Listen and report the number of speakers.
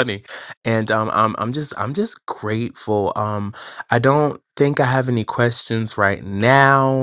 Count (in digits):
1